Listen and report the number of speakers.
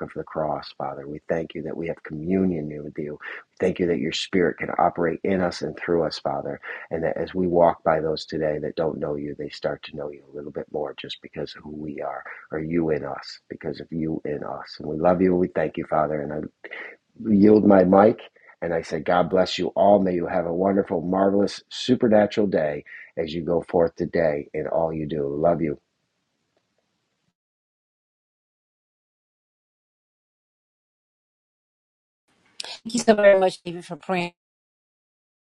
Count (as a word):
two